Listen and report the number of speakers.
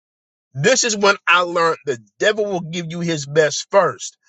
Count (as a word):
one